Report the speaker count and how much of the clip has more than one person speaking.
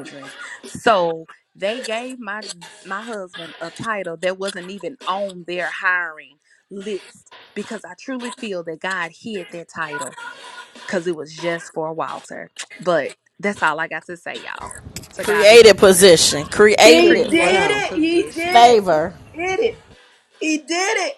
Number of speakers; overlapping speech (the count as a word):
three, about 13%